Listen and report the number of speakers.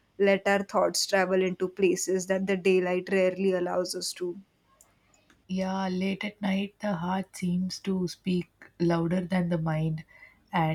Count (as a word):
two